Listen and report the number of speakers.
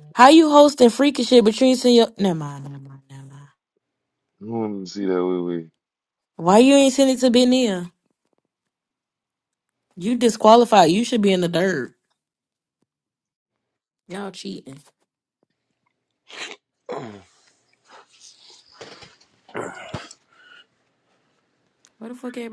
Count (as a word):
two